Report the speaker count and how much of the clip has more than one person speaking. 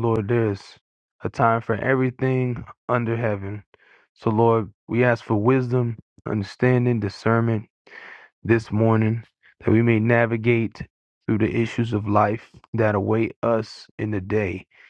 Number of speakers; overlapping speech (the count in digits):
1, no overlap